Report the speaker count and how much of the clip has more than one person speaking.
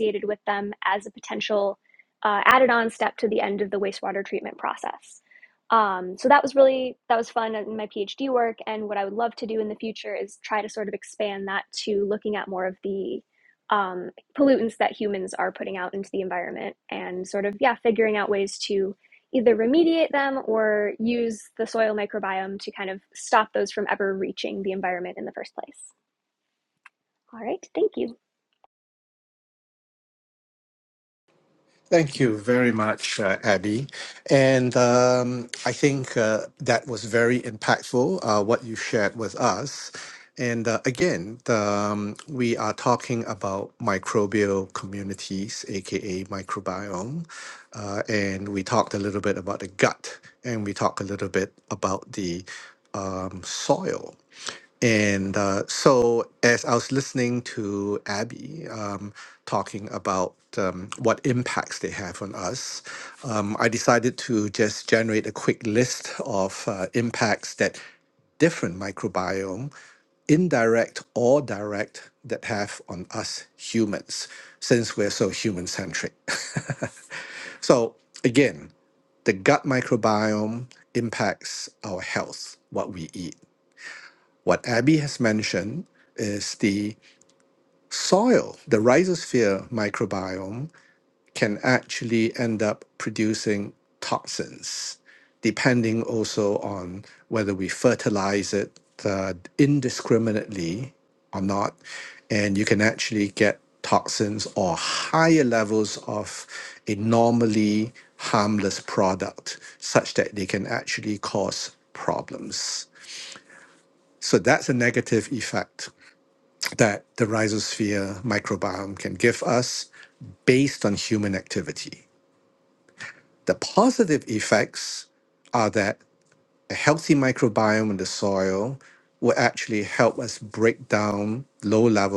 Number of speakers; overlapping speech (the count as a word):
two, no overlap